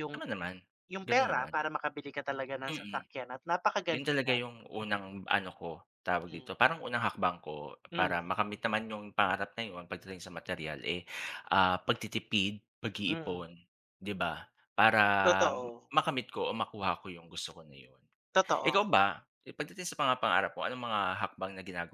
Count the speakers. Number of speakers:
2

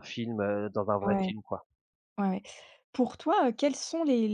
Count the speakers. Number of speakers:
2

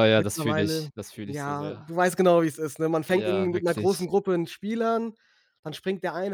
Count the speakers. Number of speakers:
2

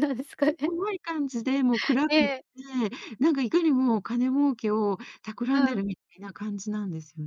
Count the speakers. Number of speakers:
2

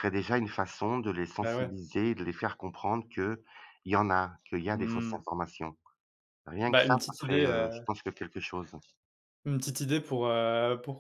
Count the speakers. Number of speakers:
2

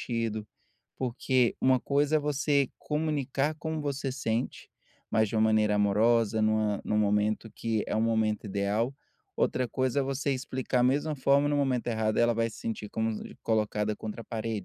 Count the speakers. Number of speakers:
1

